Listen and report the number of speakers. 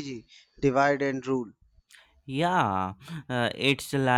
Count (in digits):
2